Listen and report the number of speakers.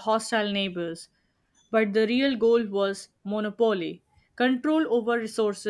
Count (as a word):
one